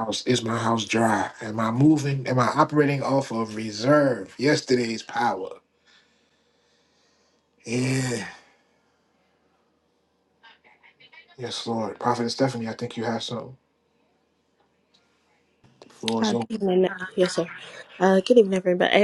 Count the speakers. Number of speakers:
two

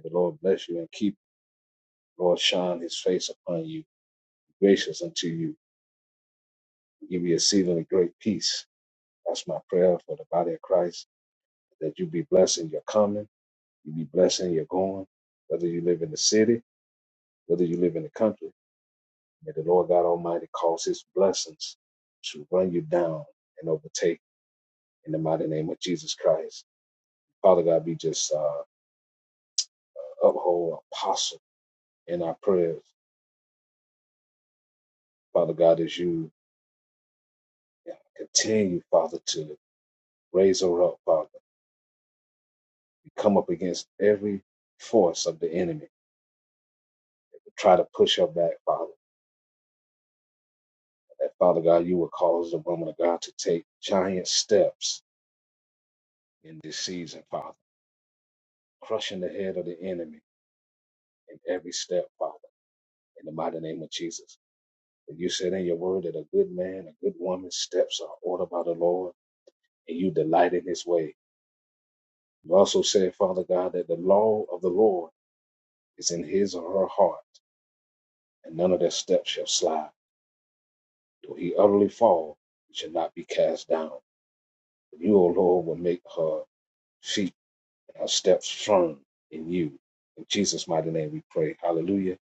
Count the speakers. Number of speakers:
one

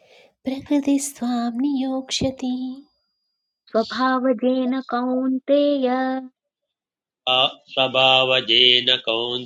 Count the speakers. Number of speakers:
three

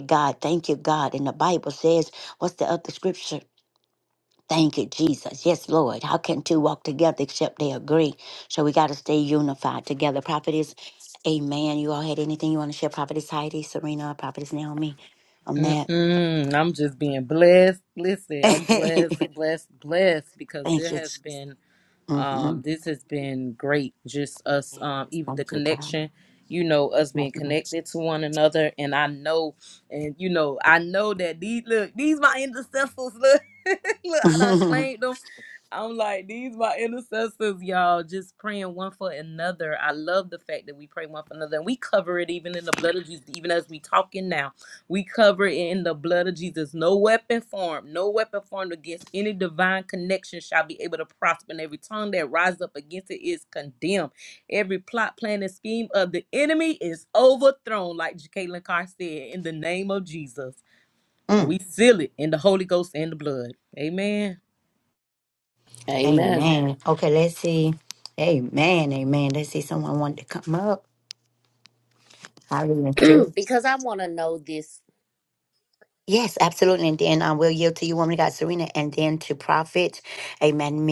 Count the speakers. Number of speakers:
three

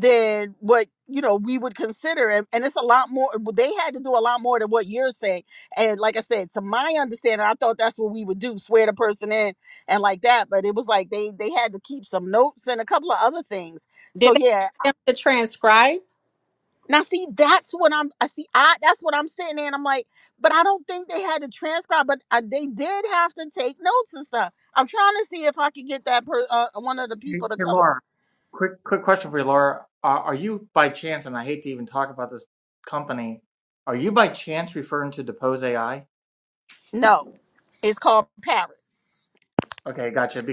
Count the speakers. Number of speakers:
three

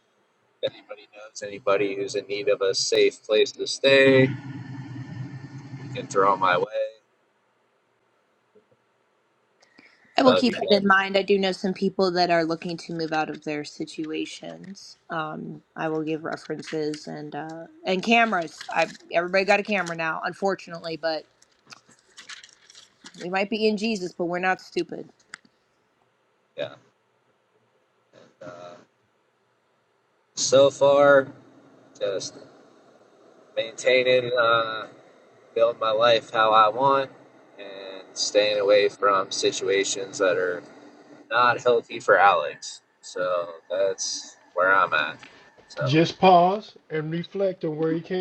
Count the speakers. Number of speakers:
three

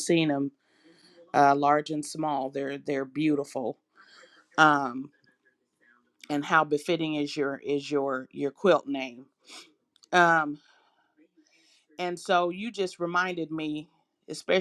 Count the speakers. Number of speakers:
one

